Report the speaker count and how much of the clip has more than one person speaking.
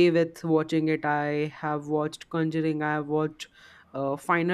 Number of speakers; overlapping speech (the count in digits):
1, no overlap